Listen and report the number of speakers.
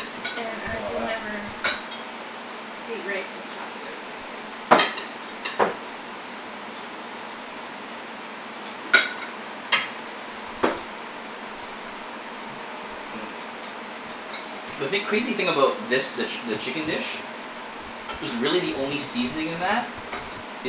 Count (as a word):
two